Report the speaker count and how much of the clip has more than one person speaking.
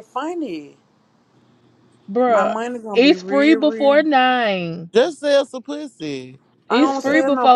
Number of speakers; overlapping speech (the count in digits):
3, about 29%